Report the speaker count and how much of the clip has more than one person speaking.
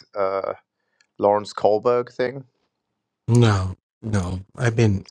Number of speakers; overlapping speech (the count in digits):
2, no overlap